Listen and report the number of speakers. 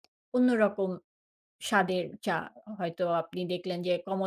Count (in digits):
1